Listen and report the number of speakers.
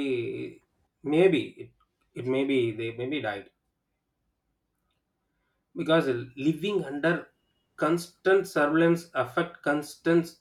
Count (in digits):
1